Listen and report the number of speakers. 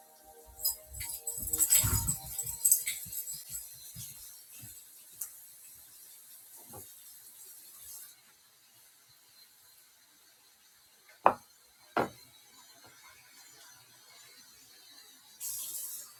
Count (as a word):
zero